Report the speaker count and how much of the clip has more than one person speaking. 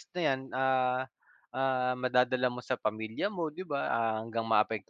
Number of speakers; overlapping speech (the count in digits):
1, no overlap